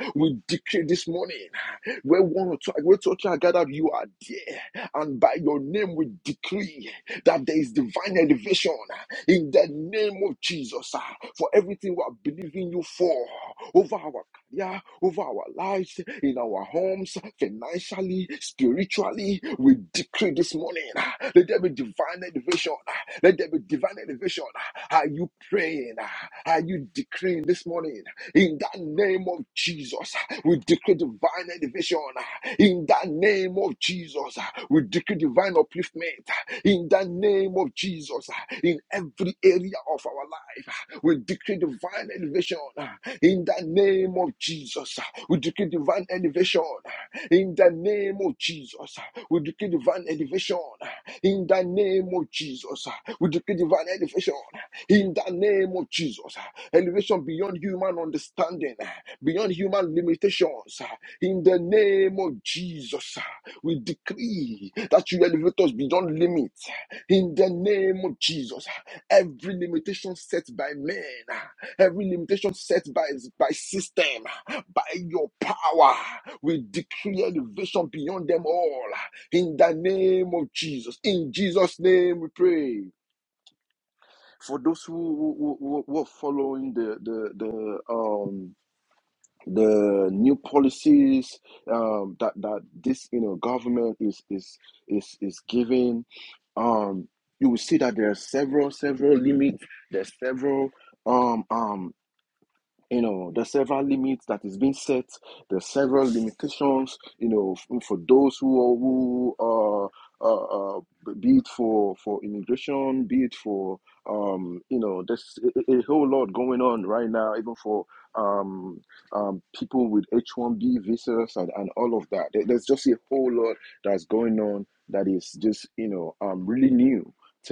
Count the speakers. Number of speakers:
1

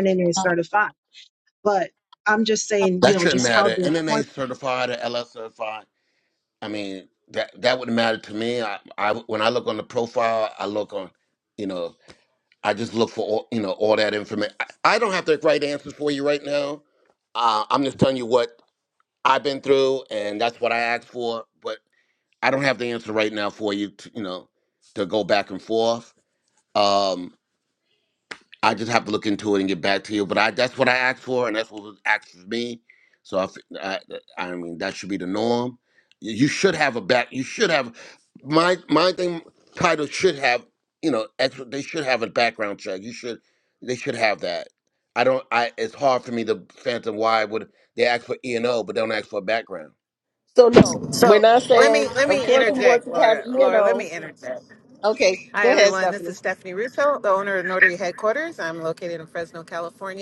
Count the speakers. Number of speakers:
4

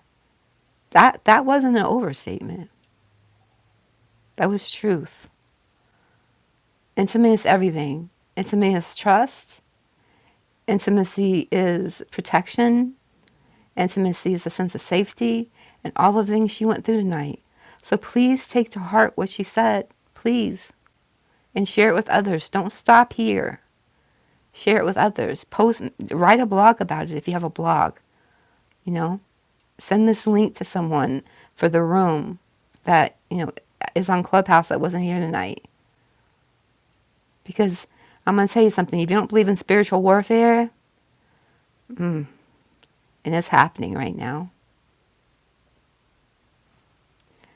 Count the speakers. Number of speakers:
1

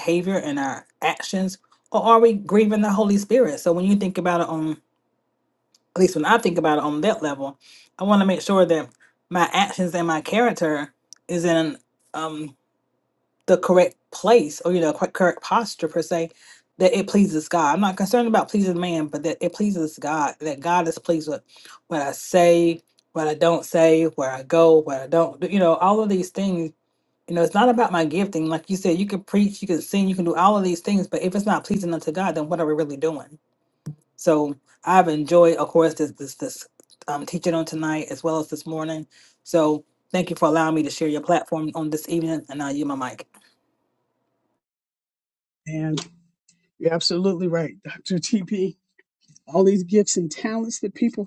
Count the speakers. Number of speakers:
2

